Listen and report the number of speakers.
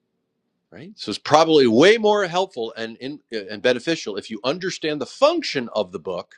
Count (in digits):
1